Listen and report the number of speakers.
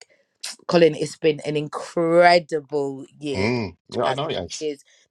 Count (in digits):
2